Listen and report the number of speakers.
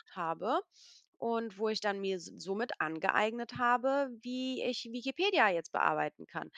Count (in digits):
1